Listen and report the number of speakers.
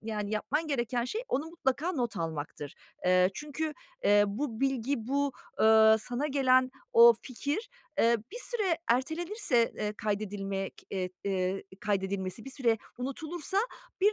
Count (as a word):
one